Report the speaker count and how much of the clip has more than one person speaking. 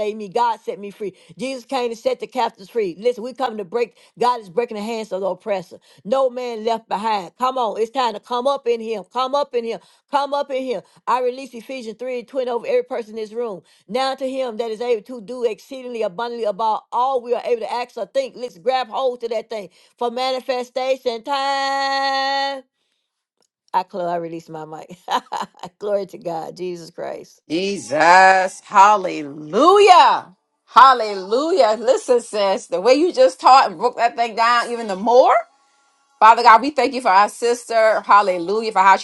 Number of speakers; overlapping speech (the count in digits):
2, no overlap